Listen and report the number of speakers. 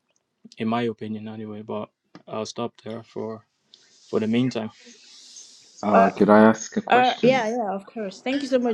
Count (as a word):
three